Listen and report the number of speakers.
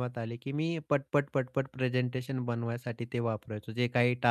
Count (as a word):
one